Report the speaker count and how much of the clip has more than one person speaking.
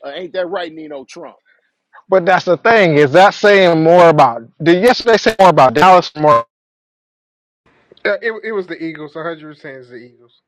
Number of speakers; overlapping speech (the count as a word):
three, no overlap